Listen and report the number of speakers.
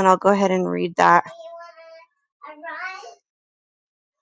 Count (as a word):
one